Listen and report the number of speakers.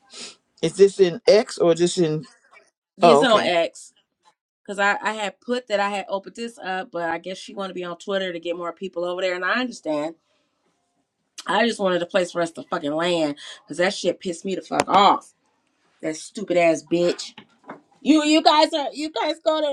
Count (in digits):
2